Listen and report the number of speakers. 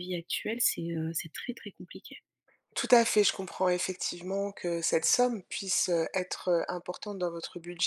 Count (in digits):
2